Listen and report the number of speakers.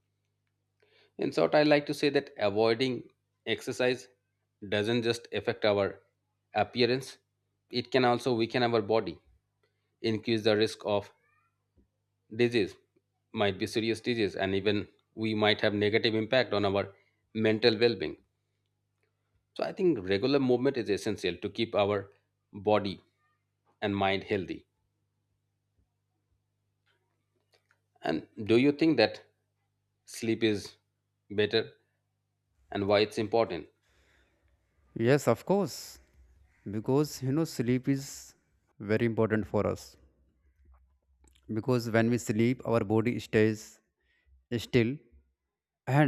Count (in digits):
2